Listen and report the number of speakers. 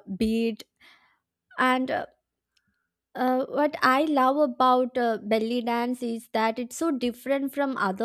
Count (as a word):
one